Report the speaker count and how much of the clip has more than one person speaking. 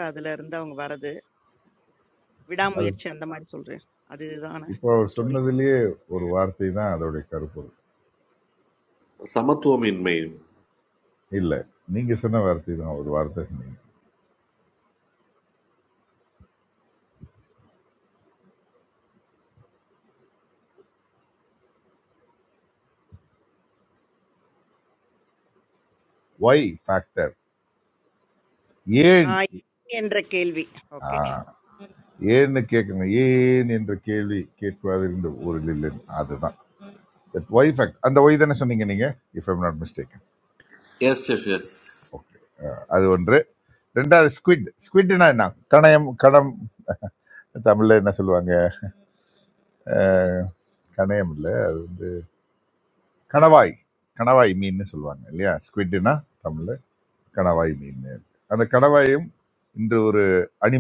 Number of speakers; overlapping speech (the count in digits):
3, about 1%